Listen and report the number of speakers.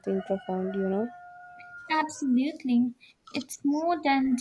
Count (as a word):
two